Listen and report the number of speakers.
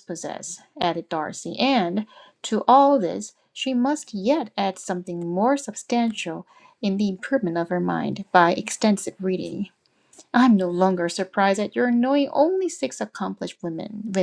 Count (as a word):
one